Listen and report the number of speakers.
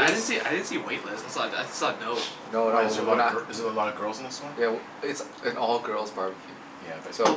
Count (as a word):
three